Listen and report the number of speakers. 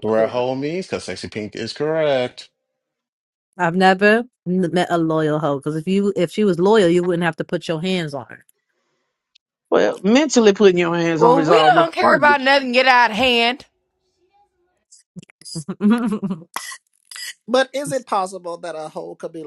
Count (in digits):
5